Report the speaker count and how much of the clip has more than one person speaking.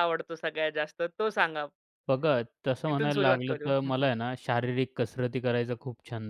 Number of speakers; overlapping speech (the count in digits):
2, about 14%